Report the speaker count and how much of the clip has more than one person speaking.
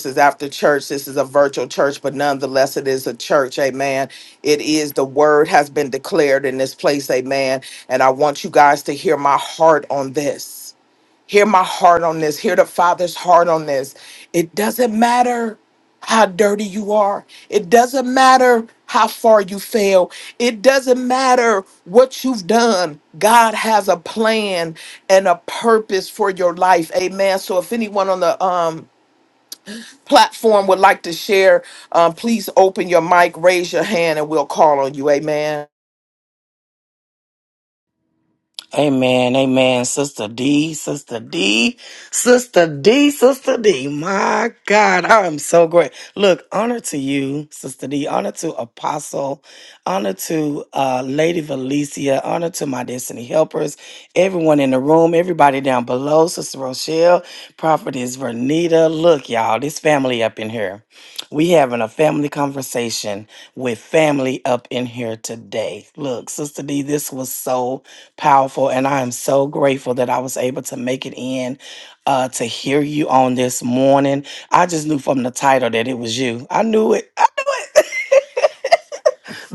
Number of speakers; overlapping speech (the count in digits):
2, no overlap